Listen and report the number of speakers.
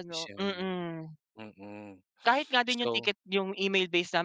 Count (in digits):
2